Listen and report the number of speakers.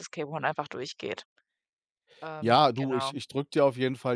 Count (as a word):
two